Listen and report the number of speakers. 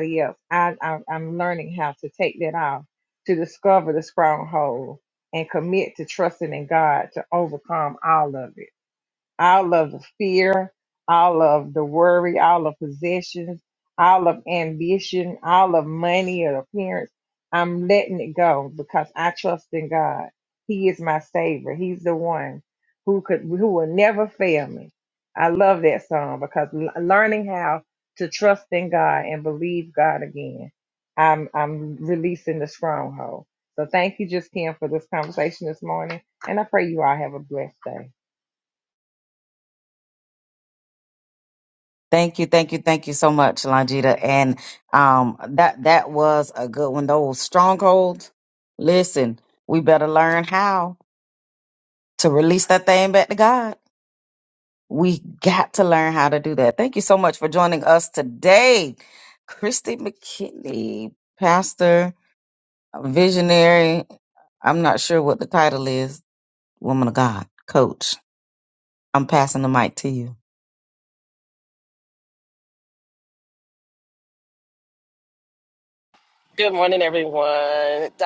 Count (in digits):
3